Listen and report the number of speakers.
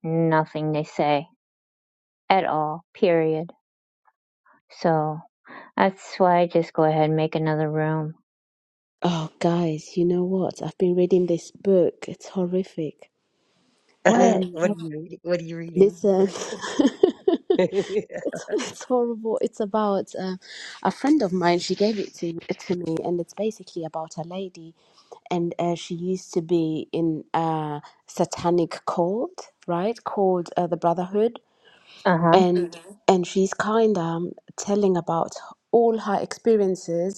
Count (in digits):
3